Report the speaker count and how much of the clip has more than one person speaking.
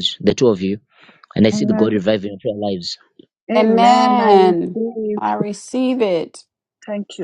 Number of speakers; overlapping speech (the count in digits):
3, about 22%